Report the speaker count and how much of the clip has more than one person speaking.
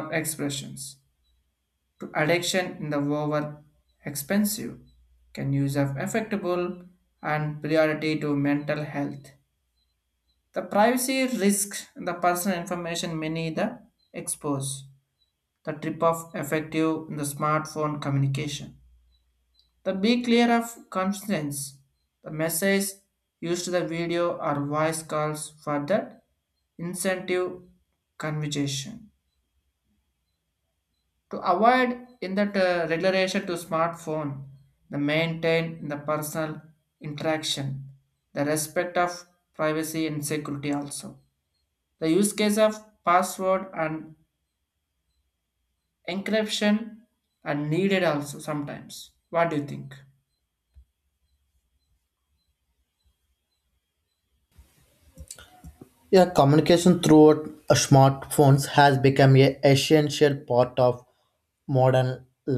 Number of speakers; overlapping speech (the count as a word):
two, no overlap